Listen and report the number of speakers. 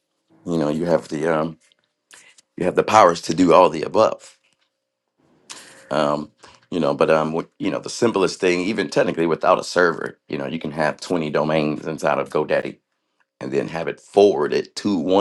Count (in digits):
1